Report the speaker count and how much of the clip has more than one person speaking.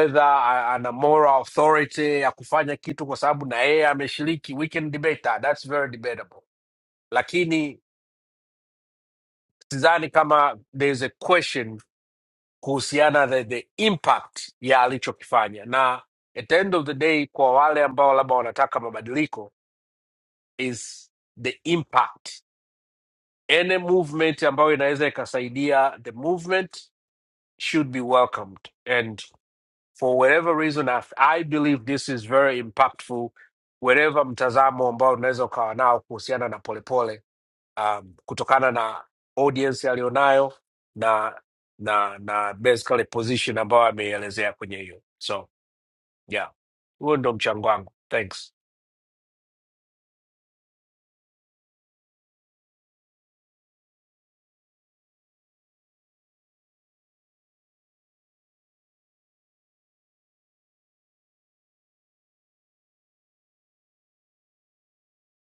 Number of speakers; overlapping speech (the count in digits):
1, no overlap